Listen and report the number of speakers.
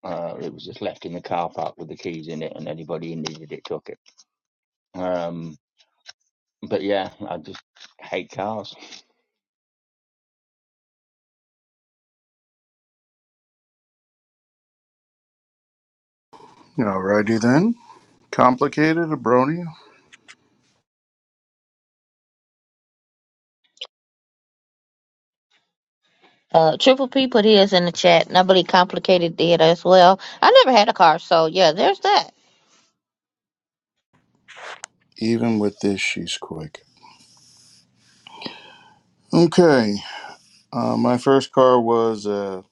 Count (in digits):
3